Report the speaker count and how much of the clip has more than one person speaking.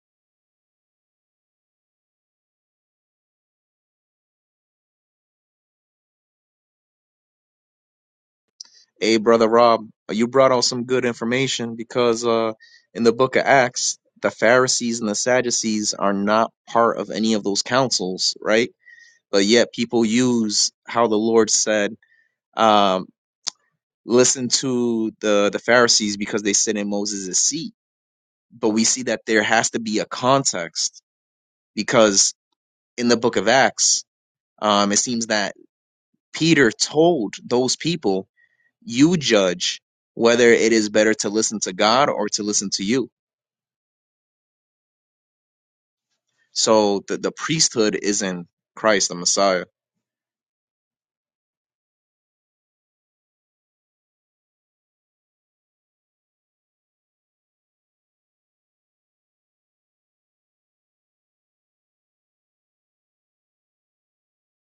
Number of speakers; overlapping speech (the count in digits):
1, no overlap